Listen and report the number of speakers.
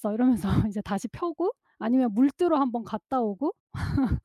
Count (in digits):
1